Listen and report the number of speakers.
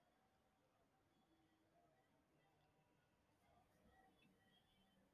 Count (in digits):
0